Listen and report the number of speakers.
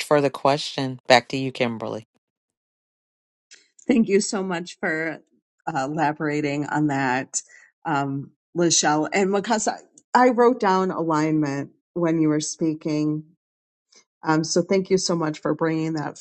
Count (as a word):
two